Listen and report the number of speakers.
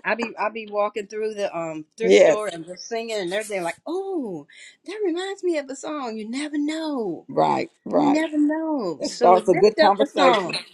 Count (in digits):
2